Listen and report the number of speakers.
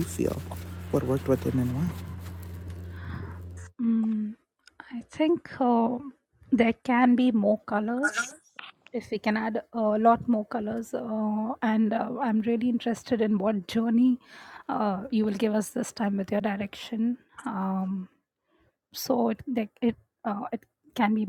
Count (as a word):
two